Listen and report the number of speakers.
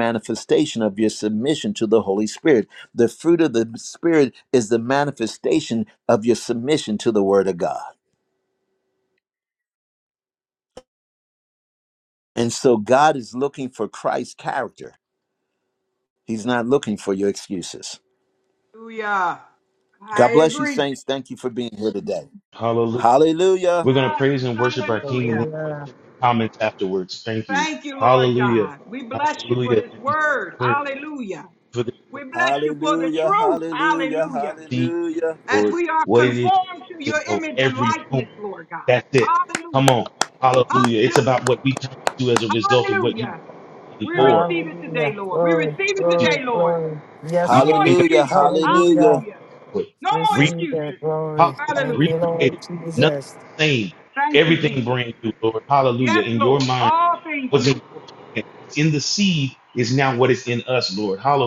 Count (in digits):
4